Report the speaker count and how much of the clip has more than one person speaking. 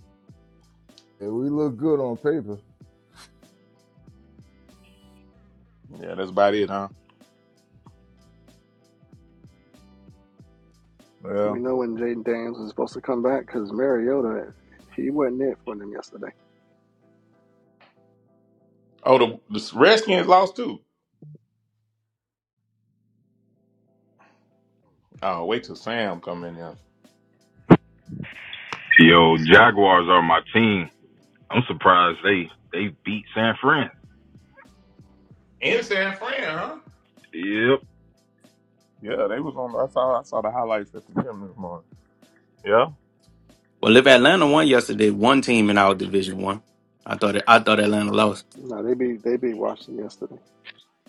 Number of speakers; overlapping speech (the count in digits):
5, under 1%